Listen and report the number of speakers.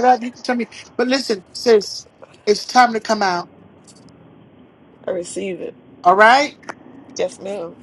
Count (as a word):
two